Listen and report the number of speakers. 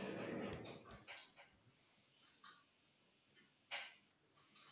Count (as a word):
zero